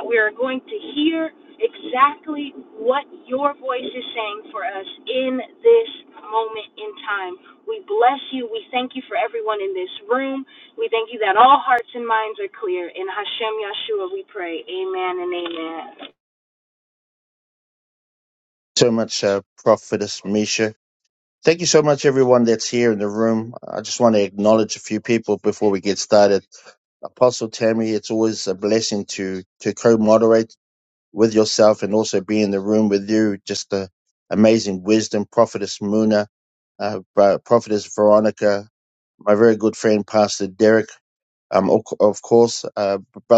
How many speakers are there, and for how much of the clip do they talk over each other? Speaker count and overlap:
two, no overlap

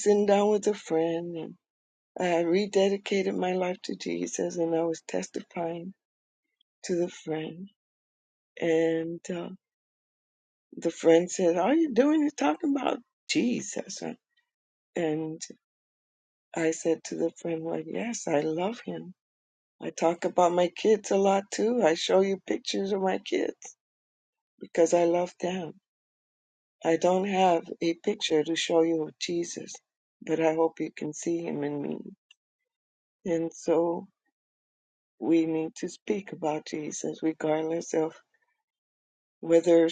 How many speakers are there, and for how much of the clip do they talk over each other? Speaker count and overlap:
one, no overlap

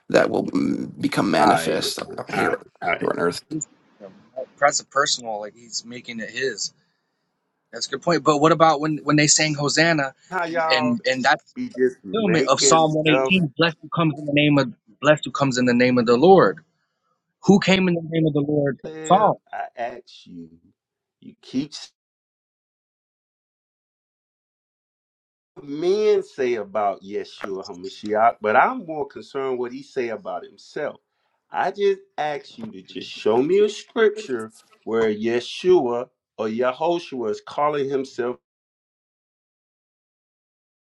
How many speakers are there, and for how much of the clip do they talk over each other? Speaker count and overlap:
three, about 8%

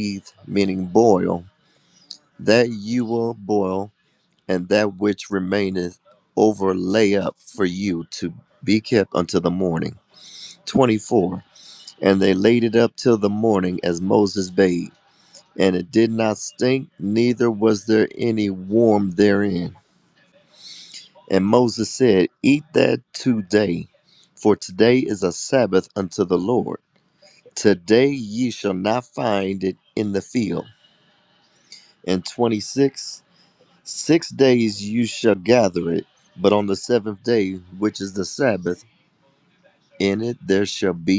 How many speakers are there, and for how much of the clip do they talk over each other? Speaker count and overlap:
one, no overlap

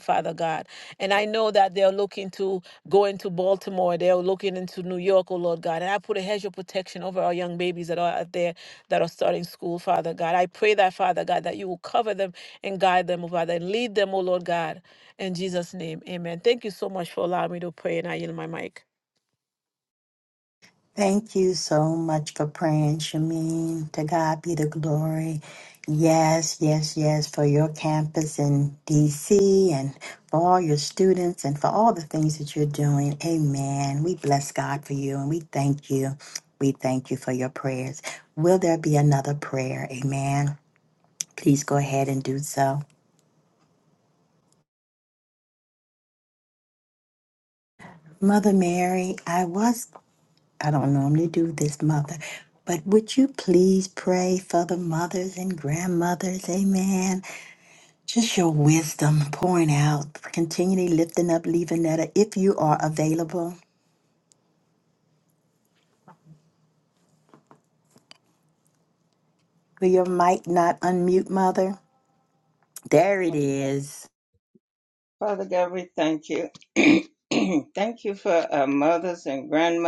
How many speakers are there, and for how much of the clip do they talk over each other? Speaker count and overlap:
three, no overlap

